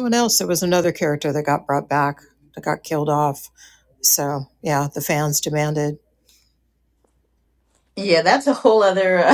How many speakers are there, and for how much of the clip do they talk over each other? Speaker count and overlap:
two, no overlap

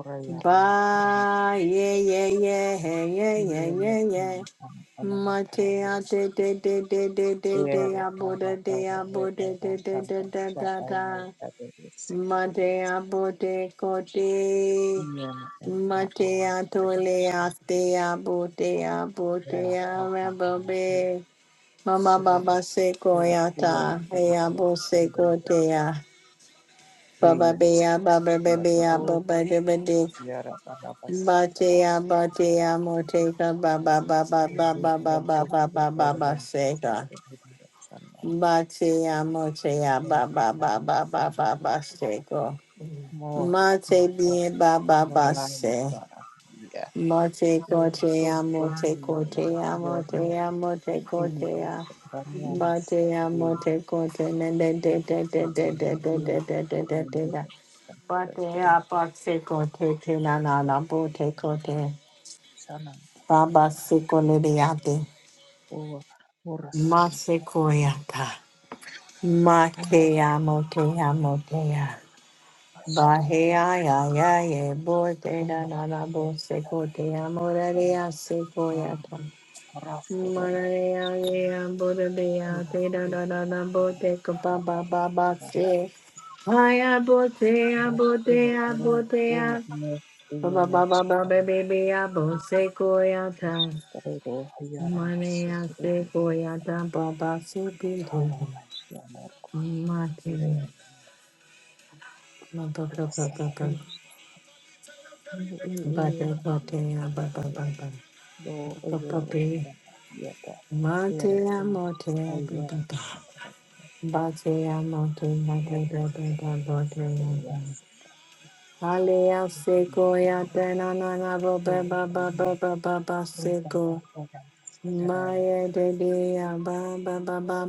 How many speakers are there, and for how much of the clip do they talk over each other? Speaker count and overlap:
two, about 31%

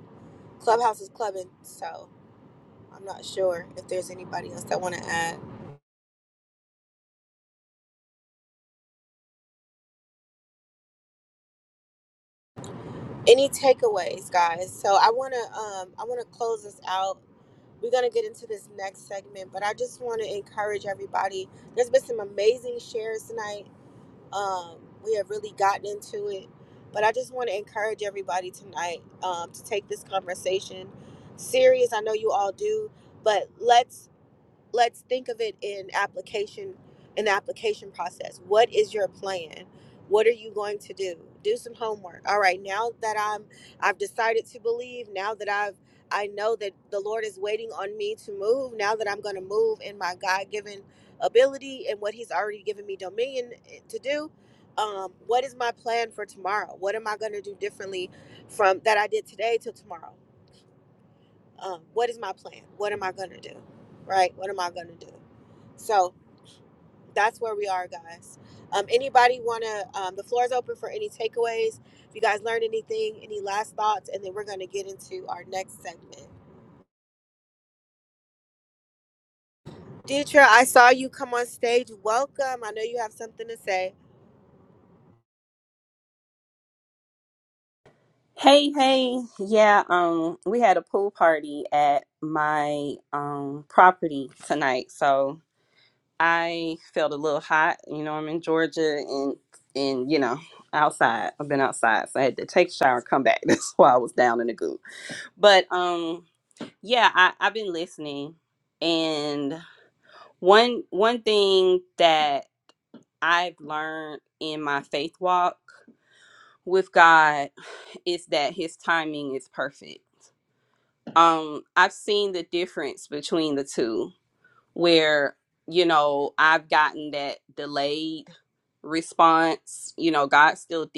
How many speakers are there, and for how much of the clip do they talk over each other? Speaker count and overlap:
two, no overlap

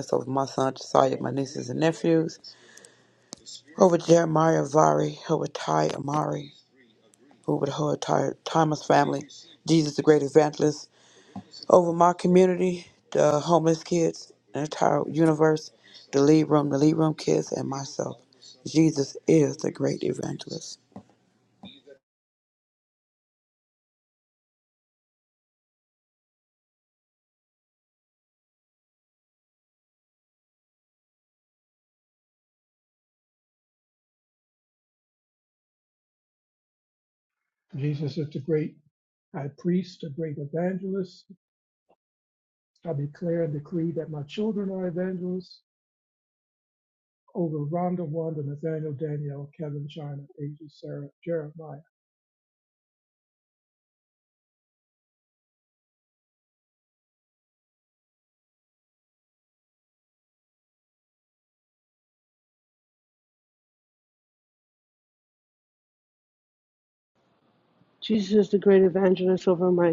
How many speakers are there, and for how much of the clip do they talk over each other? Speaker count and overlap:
three, no overlap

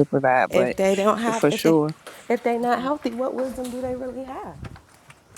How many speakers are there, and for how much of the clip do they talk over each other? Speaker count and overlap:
two, about 15%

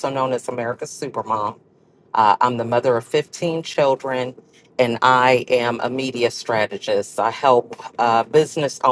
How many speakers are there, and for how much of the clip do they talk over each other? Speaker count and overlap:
one, no overlap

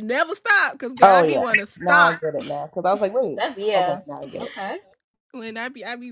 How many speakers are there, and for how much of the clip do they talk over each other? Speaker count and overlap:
three, about 21%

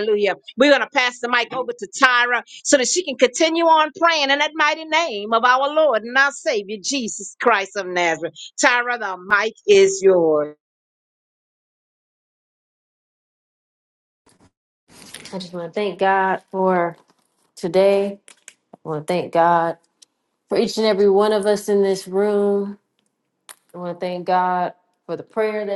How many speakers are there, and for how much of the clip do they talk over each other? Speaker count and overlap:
two, no overlap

